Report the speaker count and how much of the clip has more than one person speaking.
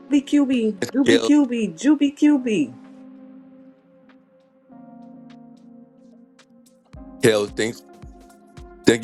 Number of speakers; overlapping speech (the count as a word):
two, about 3%